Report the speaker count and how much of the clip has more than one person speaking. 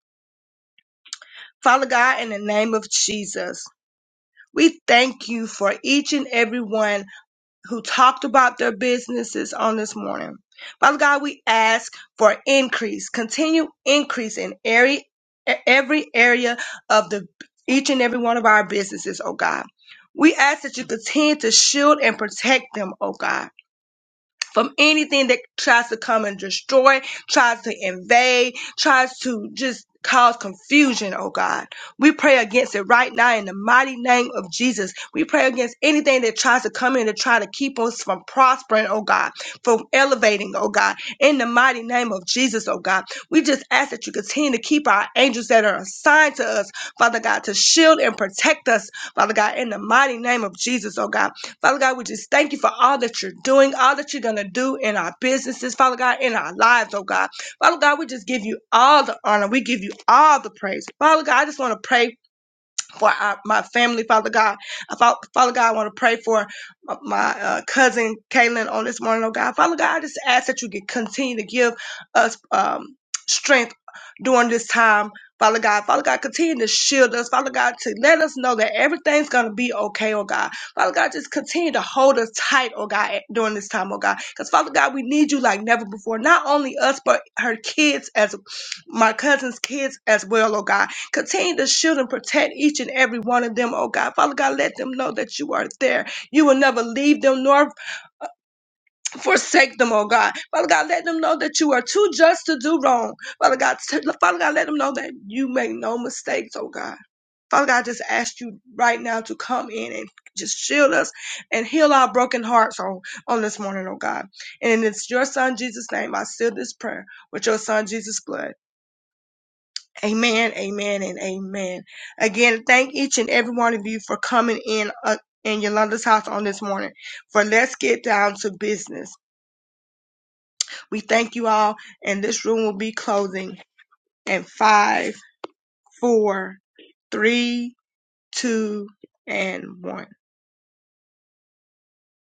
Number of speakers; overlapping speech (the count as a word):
one, no overlap